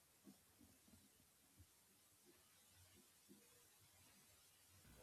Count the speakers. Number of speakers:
zero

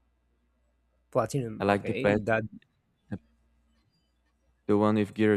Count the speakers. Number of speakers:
two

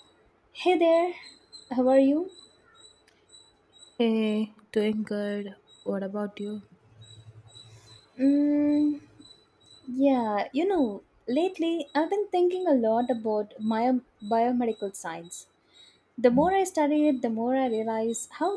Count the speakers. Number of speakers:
two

